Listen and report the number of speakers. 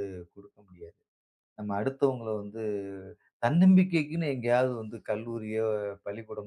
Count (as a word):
one